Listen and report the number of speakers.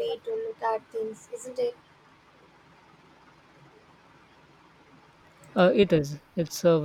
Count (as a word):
two